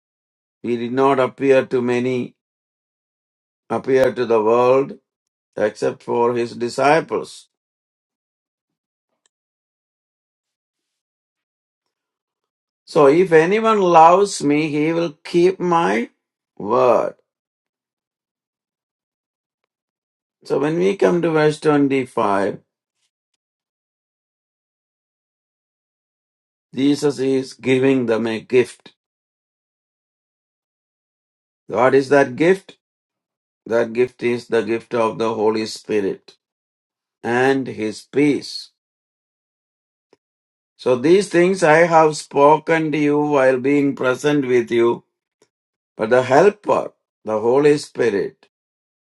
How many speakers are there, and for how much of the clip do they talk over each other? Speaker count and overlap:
one, no overlap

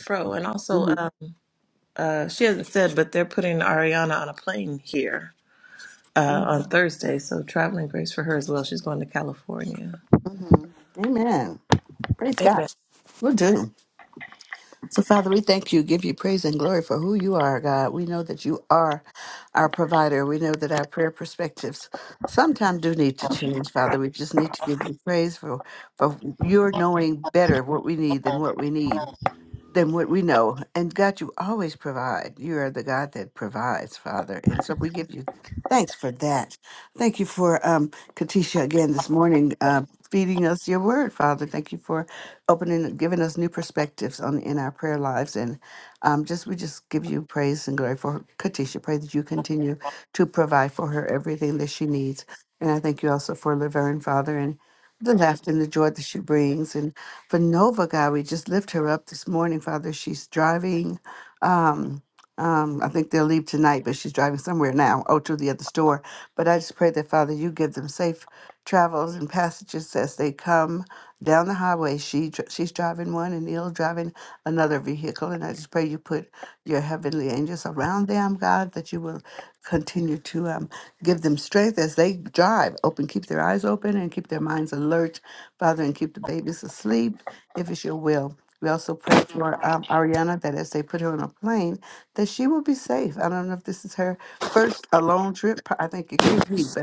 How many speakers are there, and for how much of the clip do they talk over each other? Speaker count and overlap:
two, about 1%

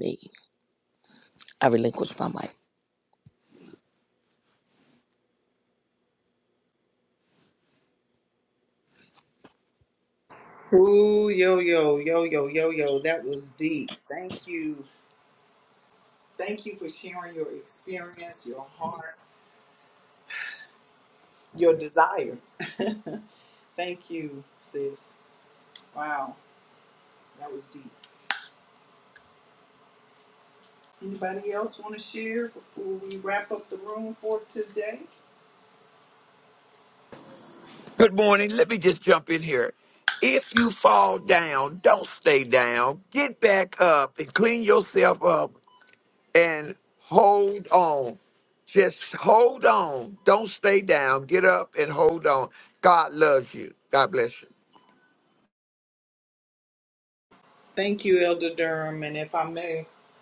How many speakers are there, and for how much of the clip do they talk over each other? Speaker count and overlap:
three, no overlap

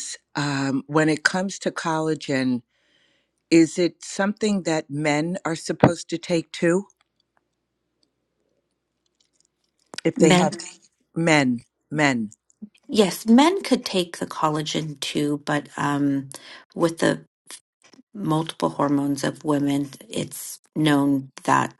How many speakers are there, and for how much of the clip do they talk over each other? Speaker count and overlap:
two, about 2%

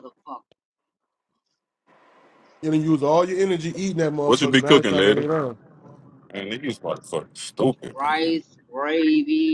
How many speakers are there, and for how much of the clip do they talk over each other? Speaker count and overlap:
three, about 14%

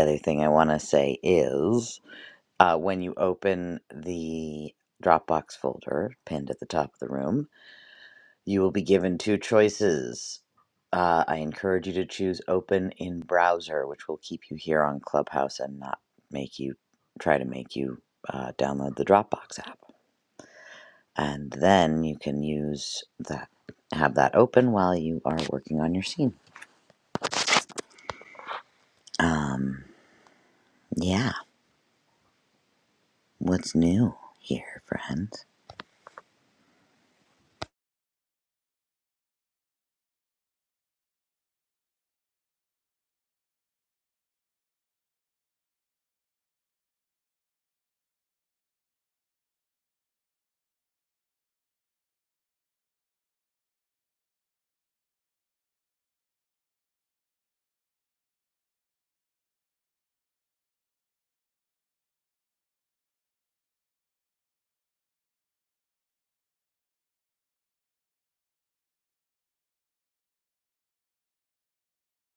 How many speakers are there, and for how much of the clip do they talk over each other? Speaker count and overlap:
one, no overlap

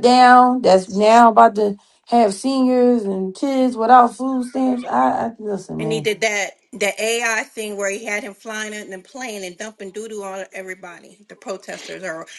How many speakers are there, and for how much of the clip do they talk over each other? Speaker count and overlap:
two, about 2%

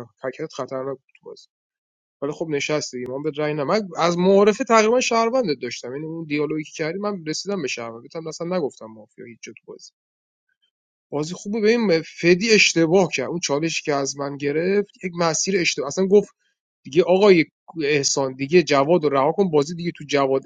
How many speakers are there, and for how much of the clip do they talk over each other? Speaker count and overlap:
one, no overlap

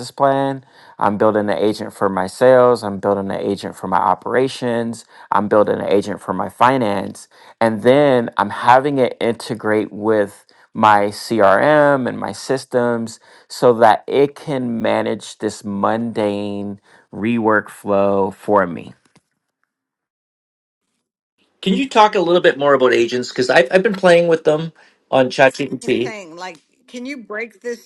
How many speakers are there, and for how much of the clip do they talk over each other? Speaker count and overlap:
three, about 1%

